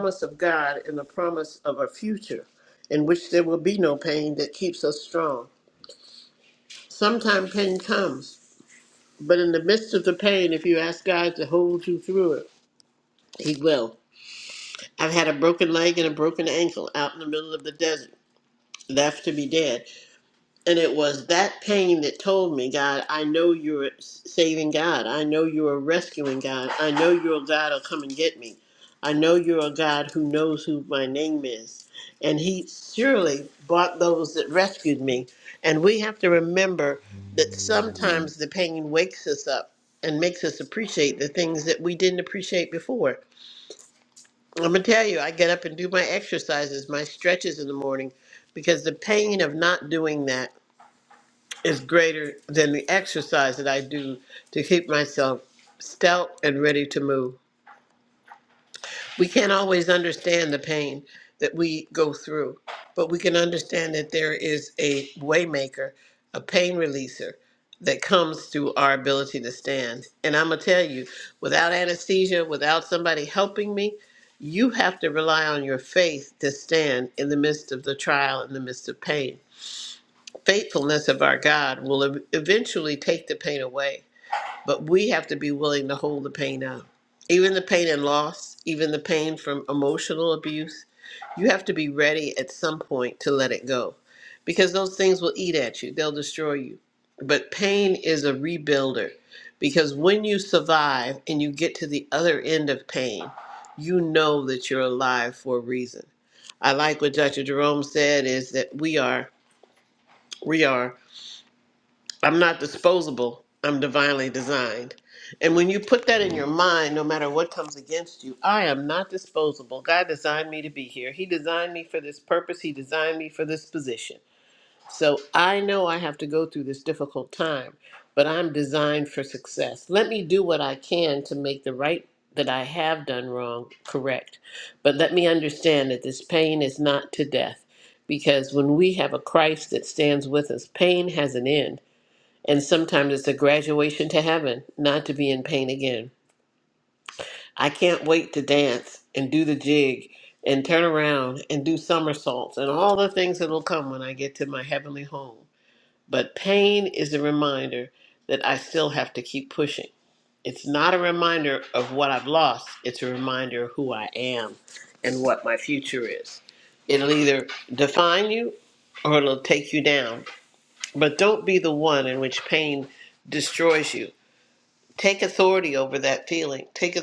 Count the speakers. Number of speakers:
one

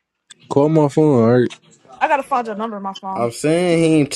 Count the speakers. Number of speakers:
three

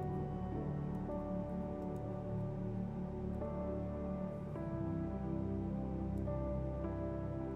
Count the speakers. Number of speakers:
zero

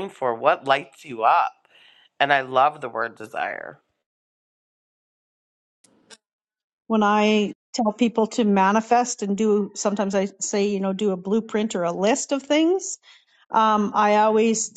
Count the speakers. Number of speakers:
two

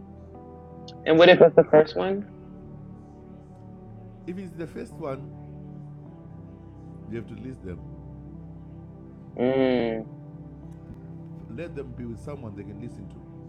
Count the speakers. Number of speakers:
two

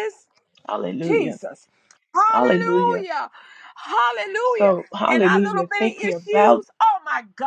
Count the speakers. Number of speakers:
two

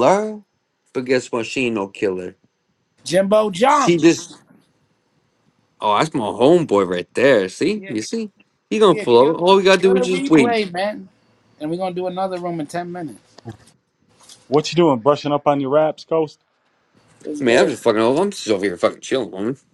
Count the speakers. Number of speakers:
three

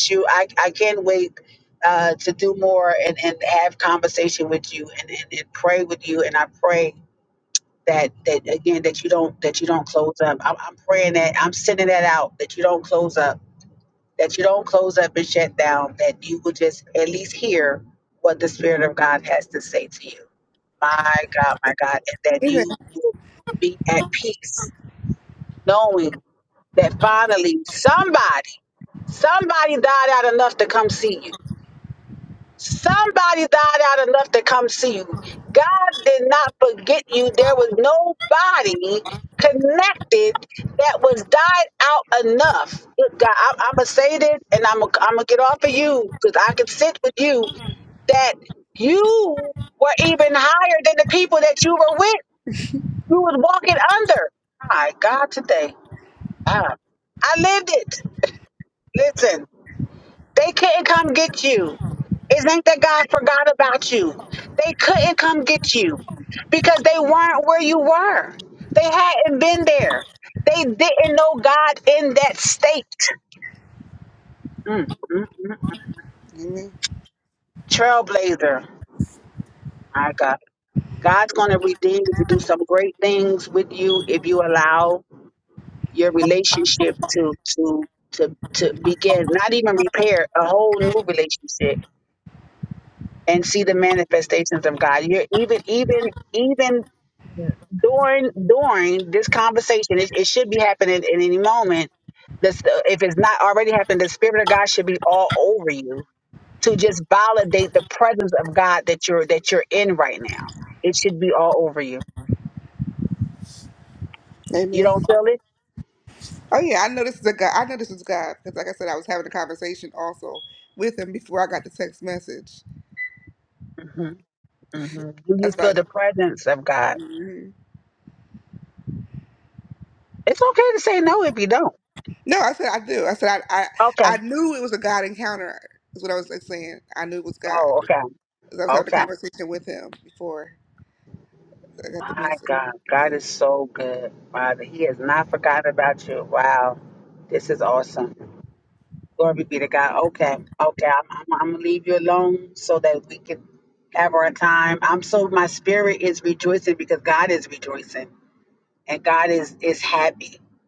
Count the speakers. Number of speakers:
two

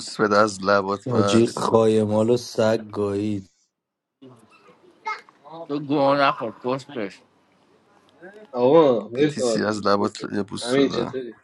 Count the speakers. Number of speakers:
four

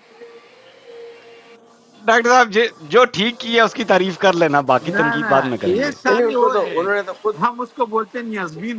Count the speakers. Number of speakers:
three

